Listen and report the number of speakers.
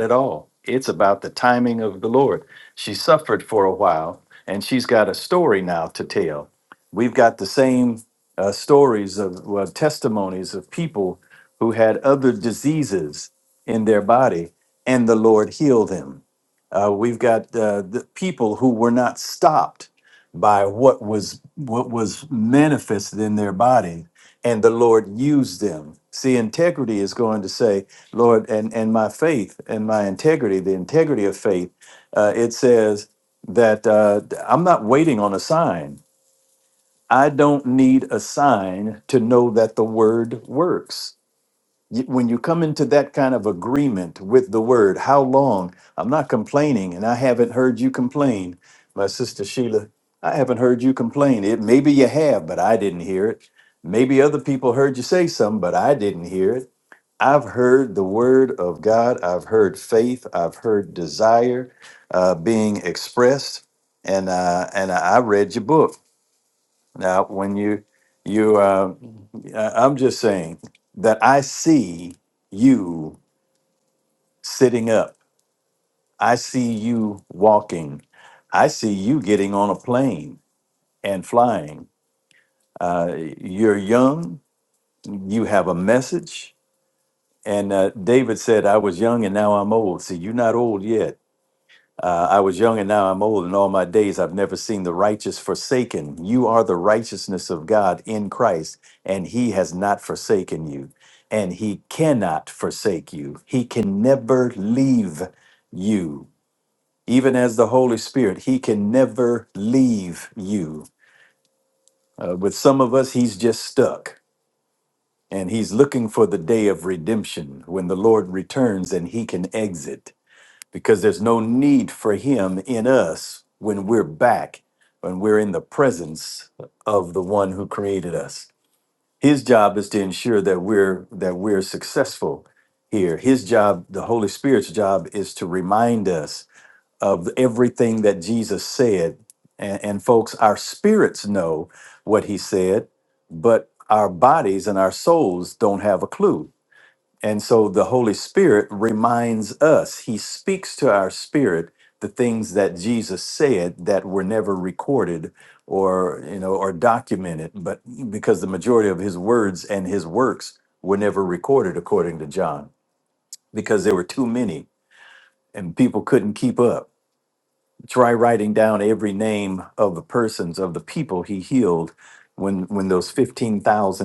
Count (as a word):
one